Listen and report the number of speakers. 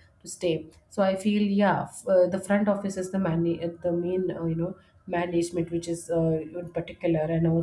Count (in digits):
1